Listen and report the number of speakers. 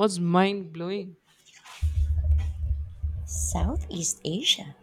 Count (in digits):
2